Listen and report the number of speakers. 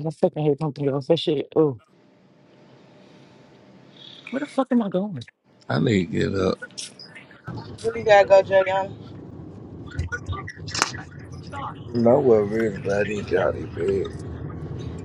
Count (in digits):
3